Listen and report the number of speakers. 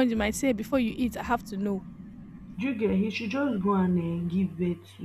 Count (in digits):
2